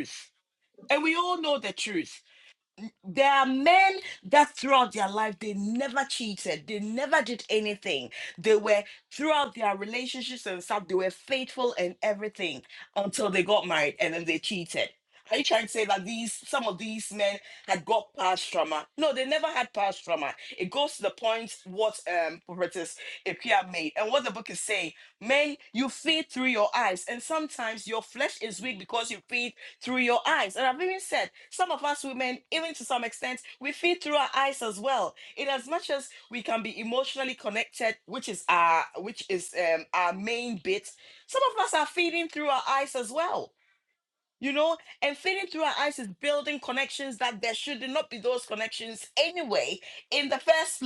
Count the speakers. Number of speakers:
one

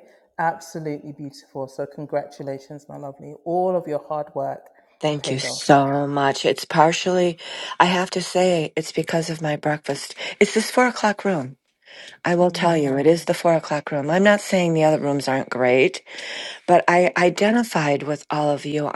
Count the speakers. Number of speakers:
two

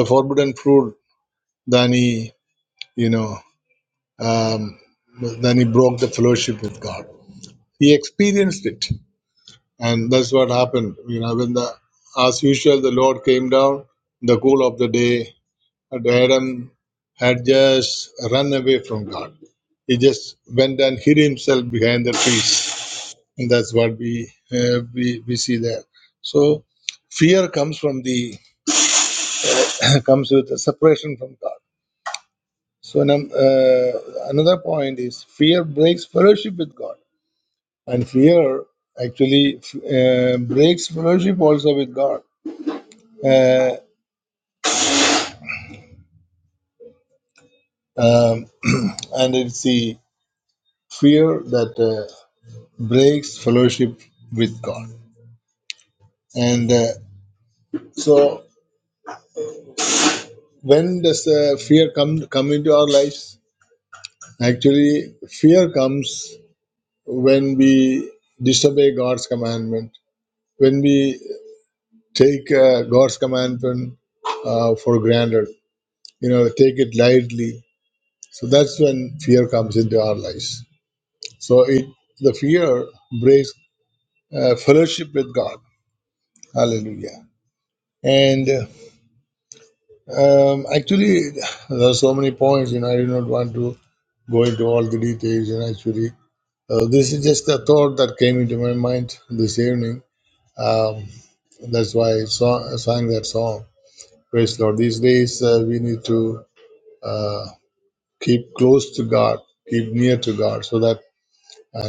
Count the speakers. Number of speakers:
one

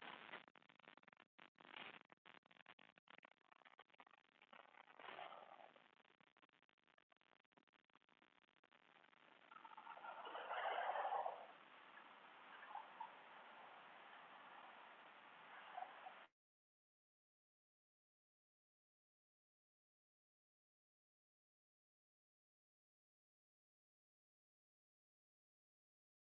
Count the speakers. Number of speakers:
zero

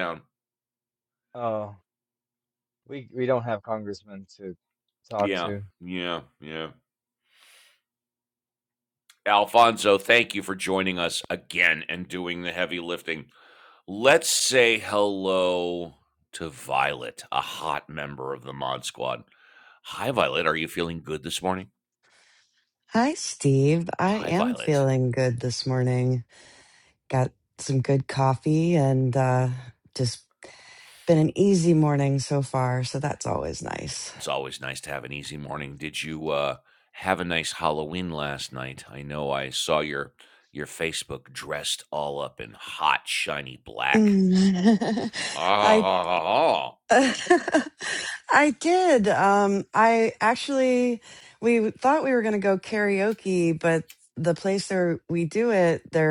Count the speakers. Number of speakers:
three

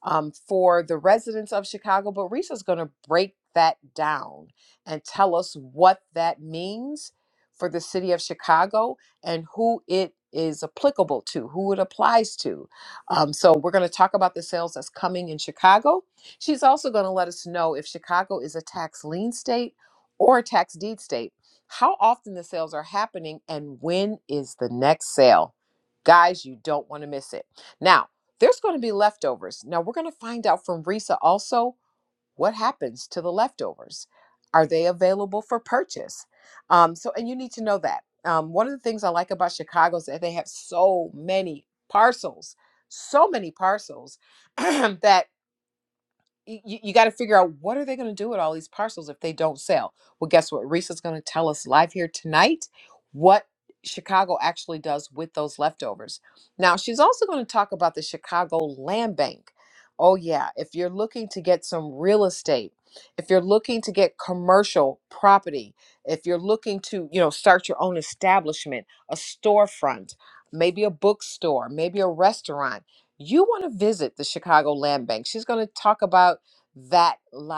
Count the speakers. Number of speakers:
one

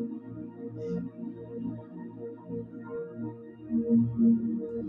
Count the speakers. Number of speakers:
zero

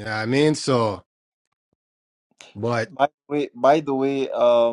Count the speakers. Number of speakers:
two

